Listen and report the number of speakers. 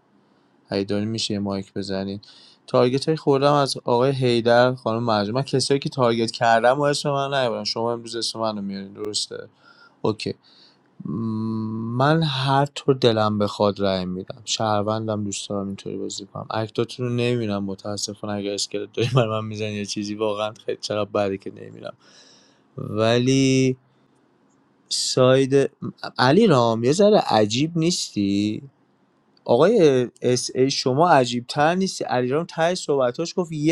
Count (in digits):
1